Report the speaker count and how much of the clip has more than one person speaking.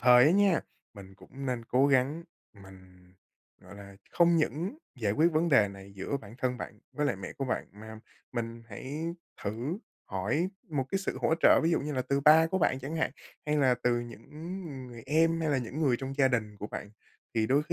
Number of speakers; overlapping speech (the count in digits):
1, no overlap